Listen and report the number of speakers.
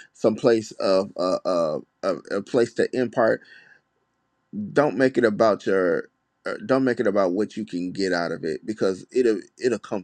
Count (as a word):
one